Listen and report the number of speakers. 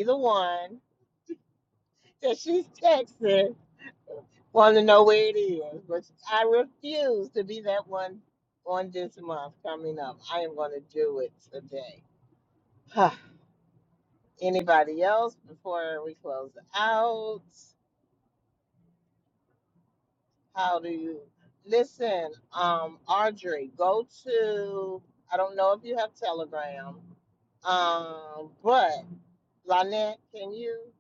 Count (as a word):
one